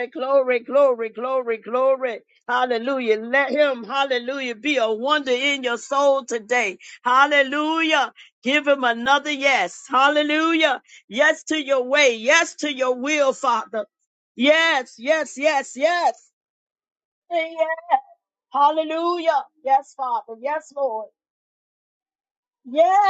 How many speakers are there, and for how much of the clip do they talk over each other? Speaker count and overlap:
one, no overlap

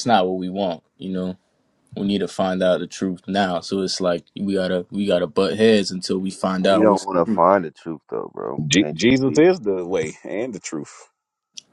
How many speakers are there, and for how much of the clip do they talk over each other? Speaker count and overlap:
three, about 10%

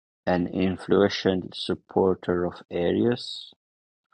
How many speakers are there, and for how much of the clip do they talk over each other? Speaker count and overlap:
one, no overlap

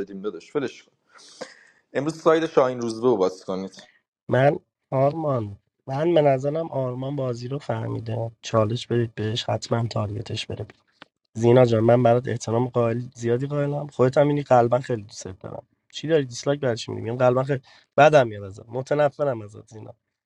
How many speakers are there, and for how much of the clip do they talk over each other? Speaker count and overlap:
two, no overlap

